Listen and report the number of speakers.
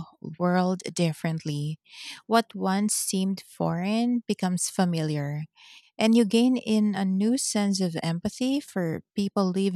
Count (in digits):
1